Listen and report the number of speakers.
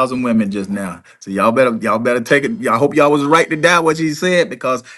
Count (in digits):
1